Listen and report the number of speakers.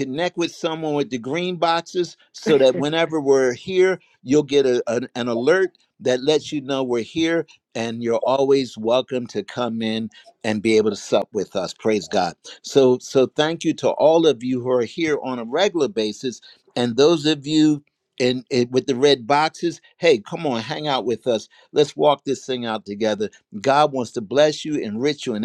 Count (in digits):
1